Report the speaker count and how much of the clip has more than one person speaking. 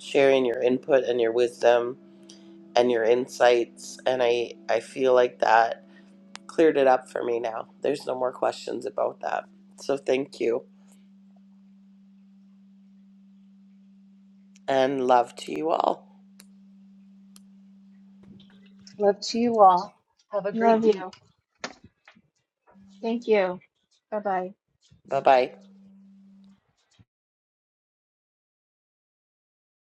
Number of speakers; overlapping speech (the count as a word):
three, about 2%